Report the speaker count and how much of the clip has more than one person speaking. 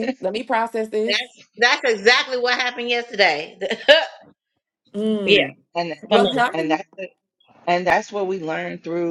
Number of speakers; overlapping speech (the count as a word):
three, about 9%